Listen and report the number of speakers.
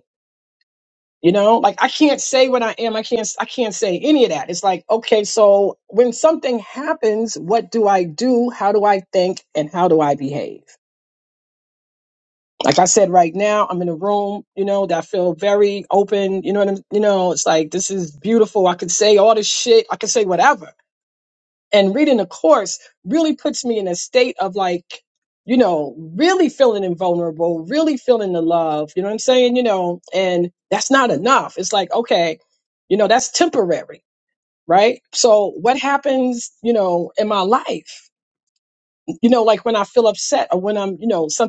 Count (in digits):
1